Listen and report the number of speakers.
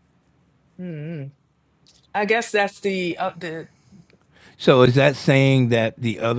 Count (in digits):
2